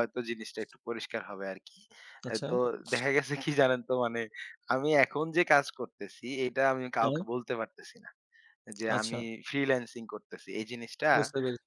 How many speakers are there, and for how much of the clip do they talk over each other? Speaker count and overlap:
two, about 5%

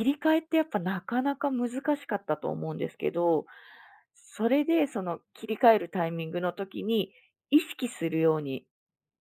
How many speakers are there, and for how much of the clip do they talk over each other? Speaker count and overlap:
one, no overlap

